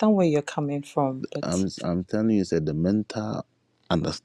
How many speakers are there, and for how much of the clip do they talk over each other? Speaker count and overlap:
two, about 6%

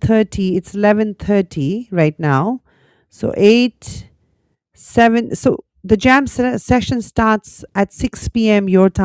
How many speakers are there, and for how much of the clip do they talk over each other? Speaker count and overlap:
one, no overlap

